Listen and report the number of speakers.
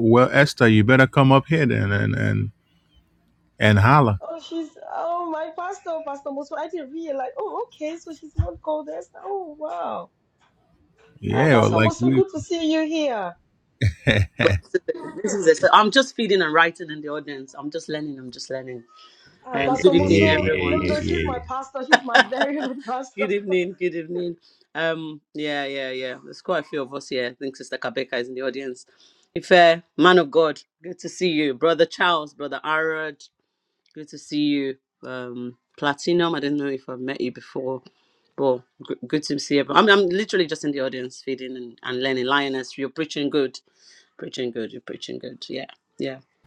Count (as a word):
three